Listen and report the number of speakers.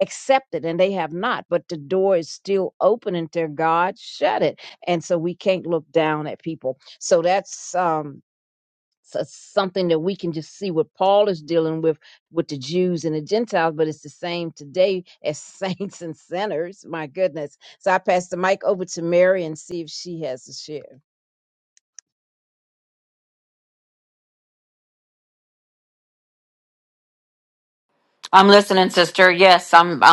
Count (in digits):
2